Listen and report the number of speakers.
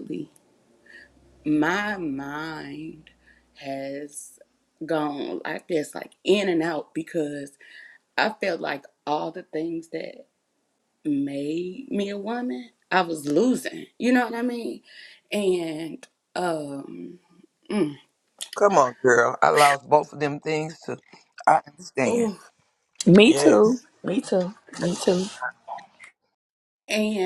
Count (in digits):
3